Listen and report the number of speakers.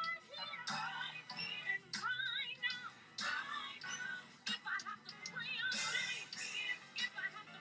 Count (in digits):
0